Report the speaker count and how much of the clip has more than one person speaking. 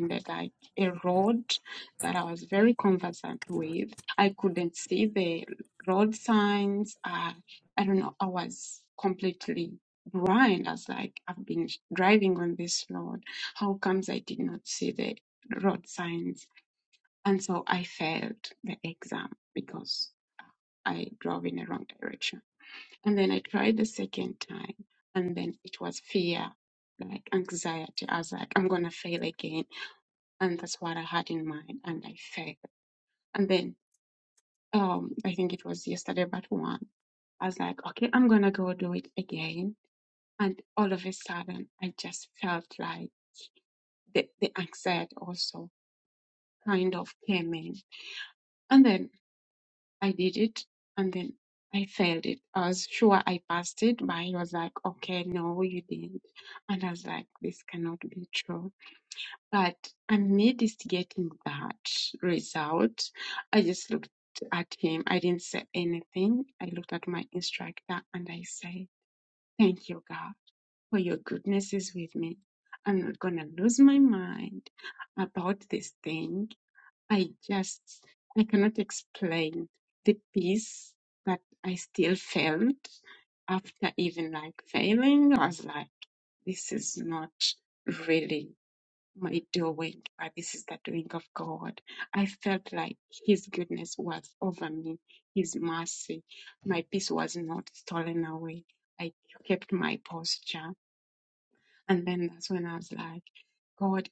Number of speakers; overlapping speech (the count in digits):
1, no overlap